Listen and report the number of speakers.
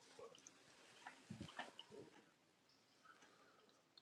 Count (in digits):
0